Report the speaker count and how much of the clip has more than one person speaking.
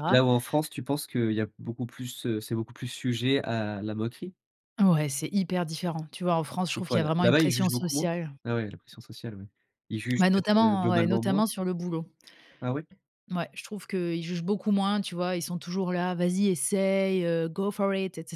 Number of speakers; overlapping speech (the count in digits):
2, about 15%